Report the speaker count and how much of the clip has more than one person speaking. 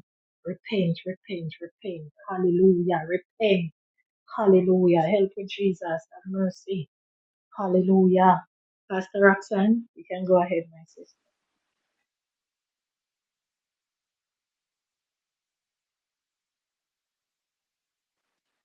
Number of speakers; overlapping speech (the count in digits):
1, no overlap